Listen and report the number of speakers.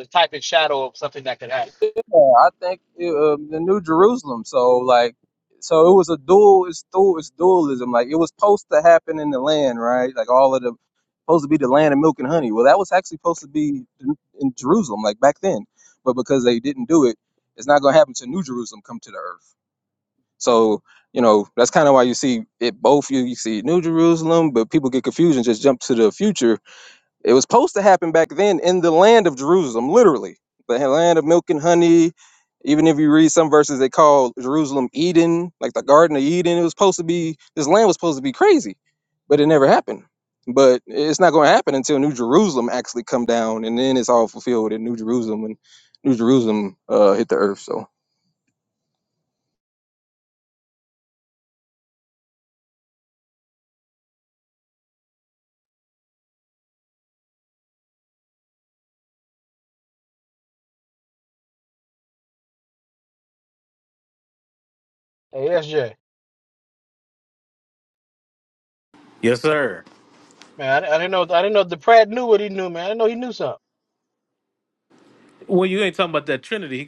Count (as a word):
three